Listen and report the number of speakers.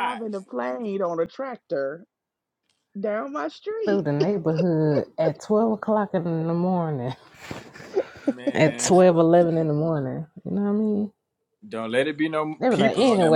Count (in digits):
3